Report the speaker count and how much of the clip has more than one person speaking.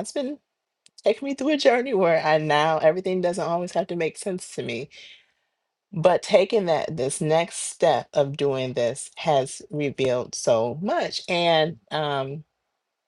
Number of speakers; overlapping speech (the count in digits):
1, no overlap